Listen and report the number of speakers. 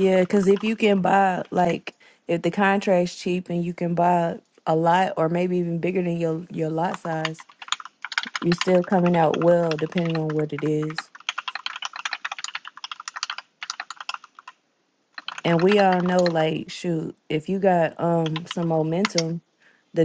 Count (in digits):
1